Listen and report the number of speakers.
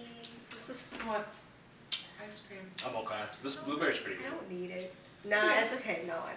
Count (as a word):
three